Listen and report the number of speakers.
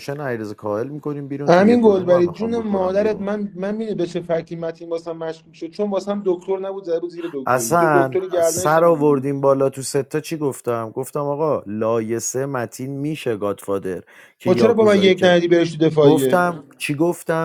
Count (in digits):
2